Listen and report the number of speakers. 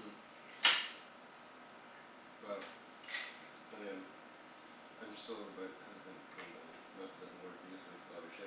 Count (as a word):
one